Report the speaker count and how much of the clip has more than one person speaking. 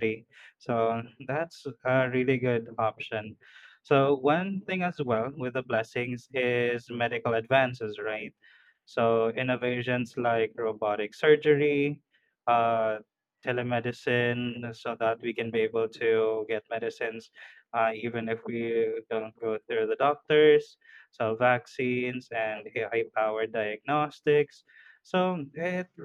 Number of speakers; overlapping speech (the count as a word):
one, no overlap